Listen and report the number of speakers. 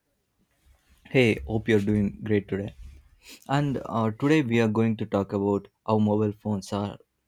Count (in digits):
1